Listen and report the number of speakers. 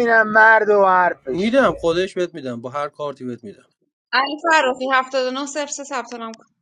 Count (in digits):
3